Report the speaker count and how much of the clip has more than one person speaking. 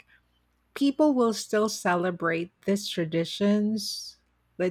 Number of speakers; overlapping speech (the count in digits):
1, no overlap